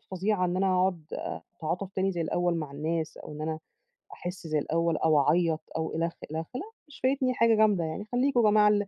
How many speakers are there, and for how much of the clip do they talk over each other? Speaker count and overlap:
1, no overlap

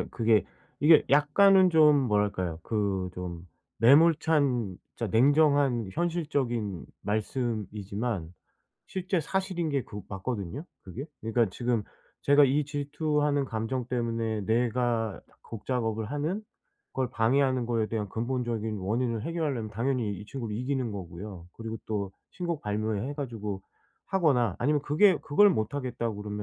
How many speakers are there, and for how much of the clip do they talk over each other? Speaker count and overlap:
1, no overlap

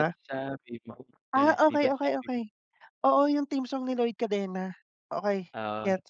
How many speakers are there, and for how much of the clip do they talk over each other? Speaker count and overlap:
2, about 19%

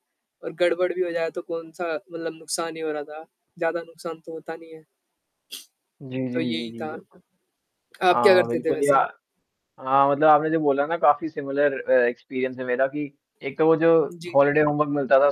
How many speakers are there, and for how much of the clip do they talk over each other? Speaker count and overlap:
2, about 11%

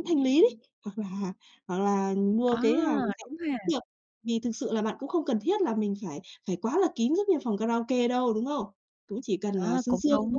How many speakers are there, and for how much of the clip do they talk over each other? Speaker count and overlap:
2, about 10%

